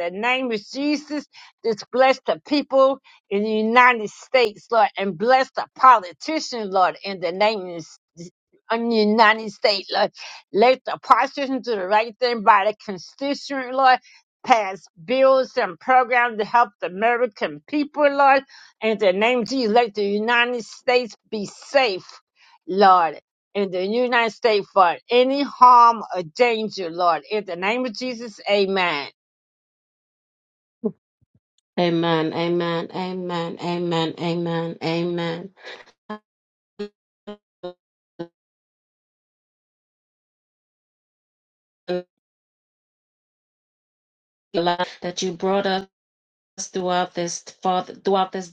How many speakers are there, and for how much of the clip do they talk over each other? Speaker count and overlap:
2, no overlap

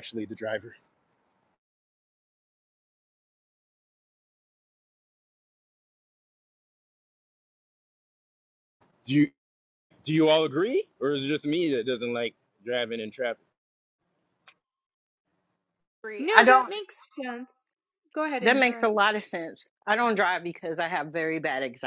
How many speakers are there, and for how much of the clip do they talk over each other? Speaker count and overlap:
3, about 4%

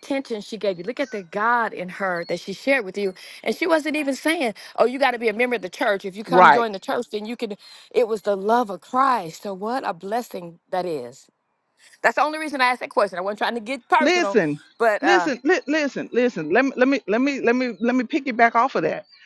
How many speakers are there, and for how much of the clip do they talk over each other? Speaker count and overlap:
2, about 5%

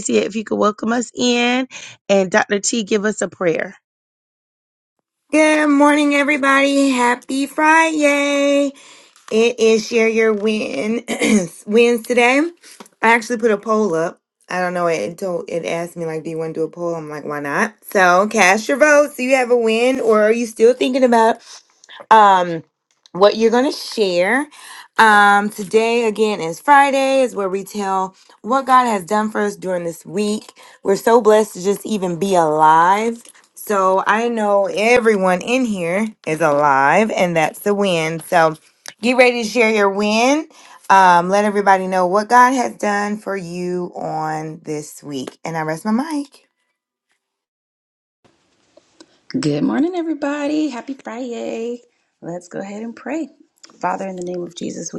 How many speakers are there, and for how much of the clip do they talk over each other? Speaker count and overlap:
3, no overlap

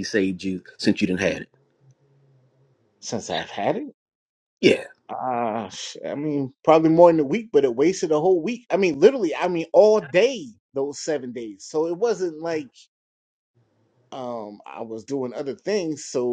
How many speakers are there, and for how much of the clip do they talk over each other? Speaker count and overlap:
2, no overlap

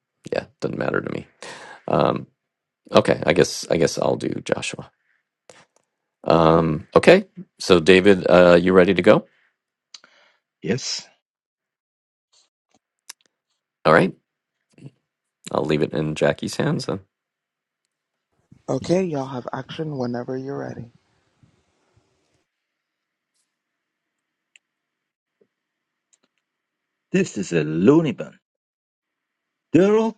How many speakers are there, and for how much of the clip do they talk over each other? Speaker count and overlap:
3, no overlap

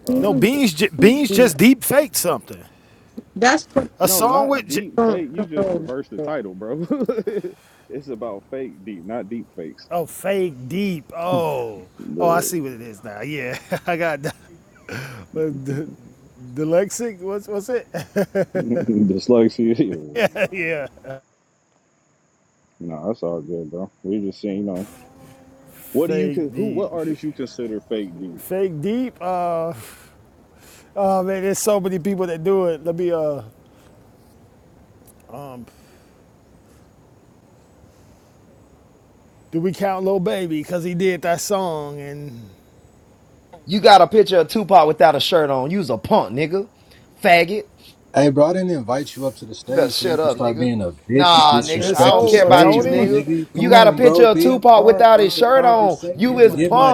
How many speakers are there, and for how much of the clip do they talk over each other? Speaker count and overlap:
5, about 19%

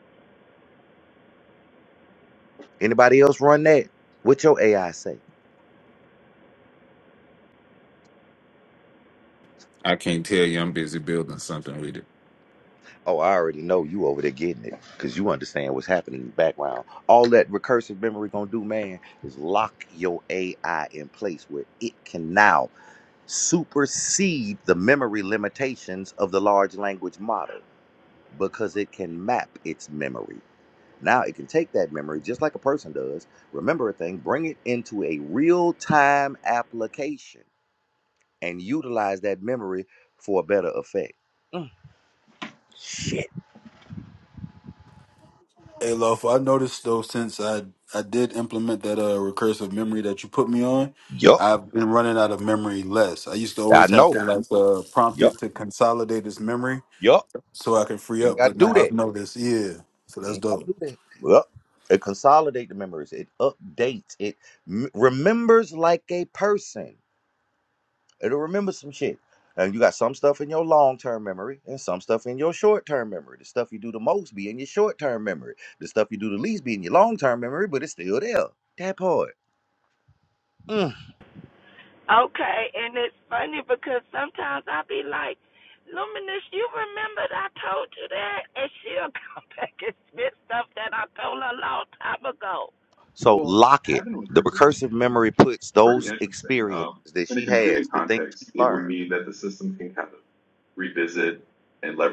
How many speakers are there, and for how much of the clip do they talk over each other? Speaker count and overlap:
5, about 4%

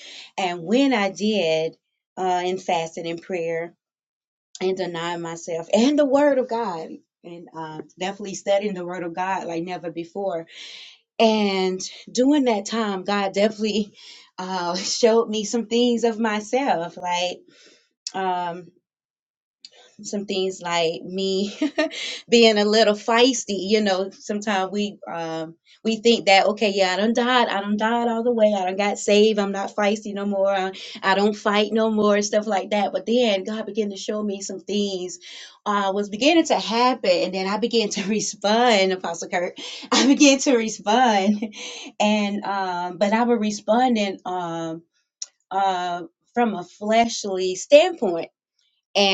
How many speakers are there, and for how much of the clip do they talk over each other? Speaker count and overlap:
1, no overlap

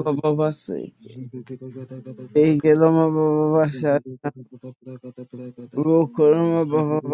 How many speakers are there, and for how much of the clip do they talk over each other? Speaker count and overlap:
3, about 52%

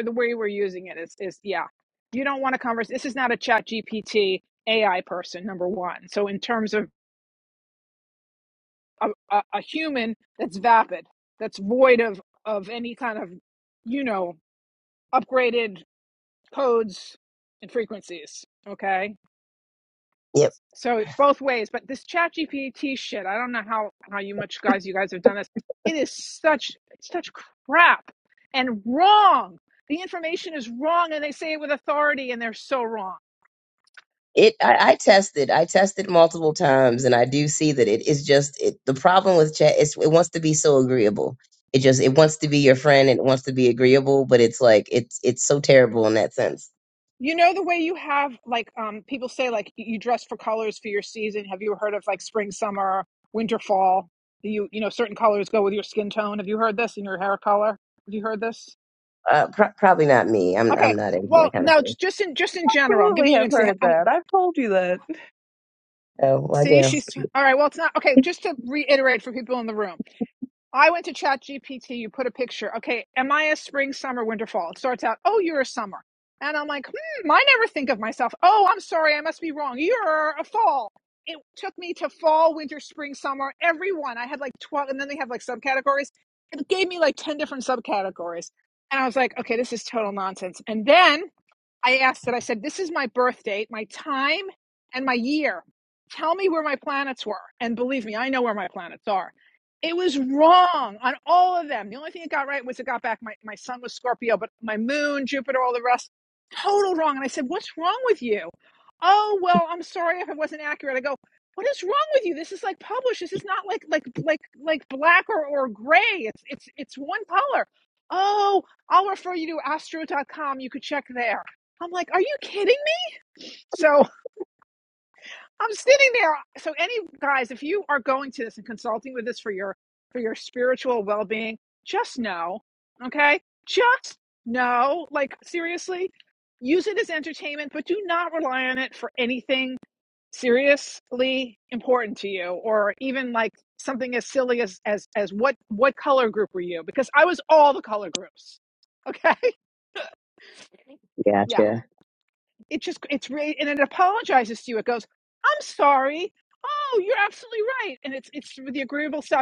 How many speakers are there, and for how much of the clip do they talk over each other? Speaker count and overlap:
3, about 2%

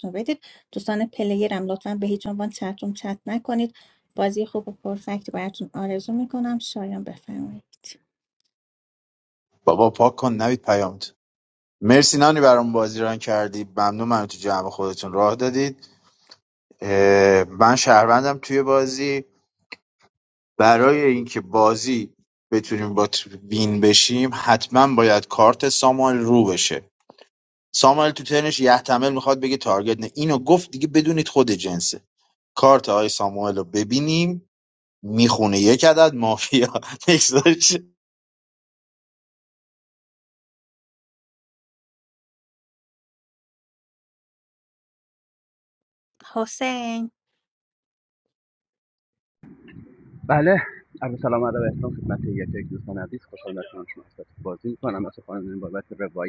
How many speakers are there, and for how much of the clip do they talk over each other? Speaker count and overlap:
3, no overlap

